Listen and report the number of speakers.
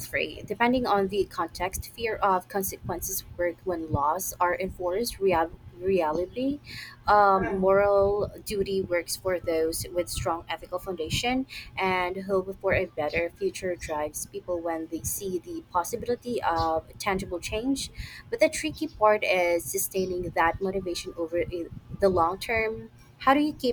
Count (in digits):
1